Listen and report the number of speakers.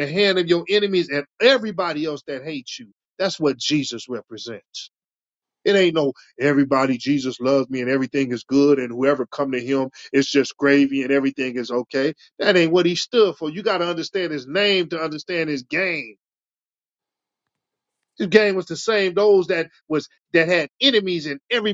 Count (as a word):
one